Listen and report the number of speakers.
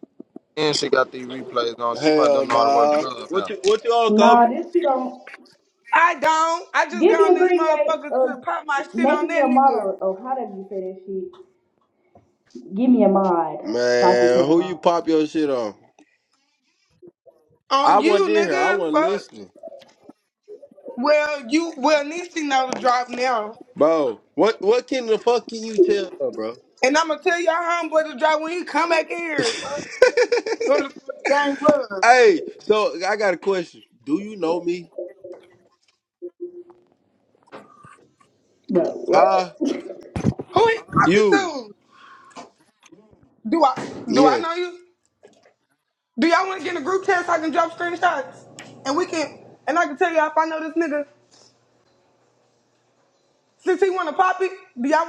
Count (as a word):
four